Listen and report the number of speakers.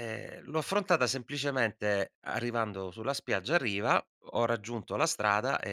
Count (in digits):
1